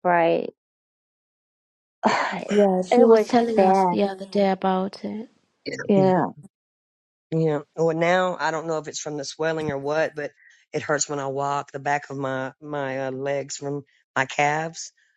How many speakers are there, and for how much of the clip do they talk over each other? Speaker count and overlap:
3, about 9%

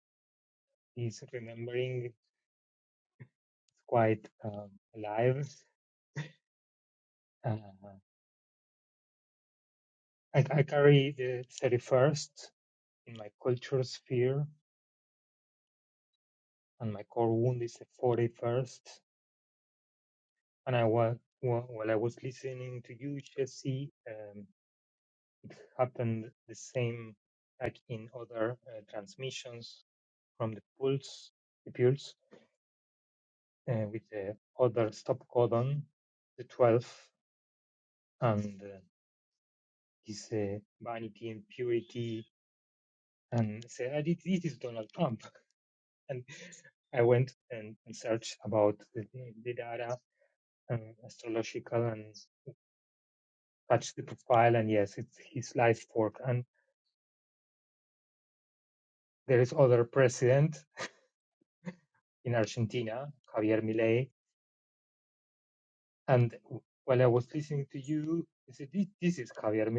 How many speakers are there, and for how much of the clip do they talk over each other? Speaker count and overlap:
1, no overlap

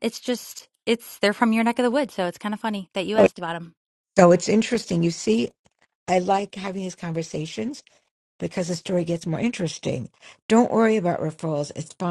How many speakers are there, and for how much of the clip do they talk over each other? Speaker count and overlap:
2, no overlap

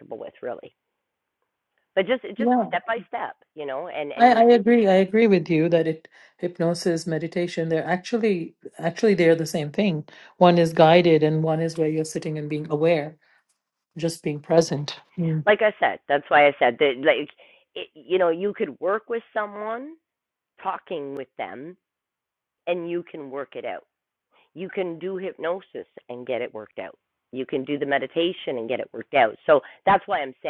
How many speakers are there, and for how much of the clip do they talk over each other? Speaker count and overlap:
2, about 2%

